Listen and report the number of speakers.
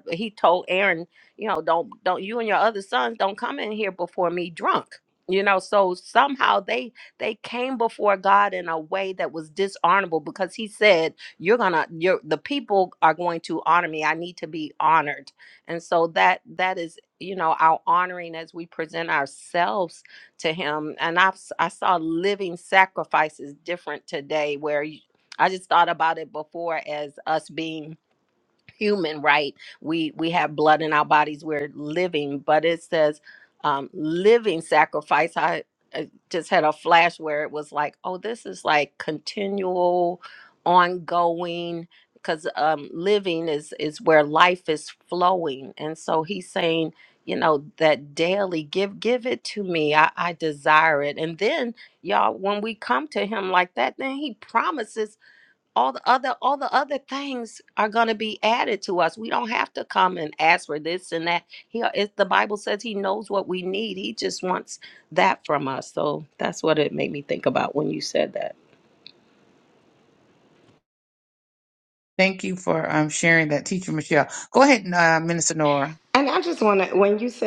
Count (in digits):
3